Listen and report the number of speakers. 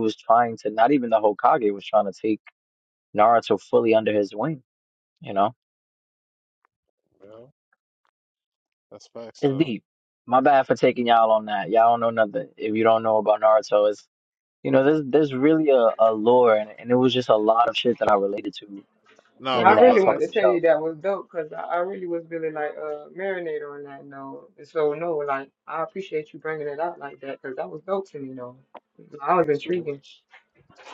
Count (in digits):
3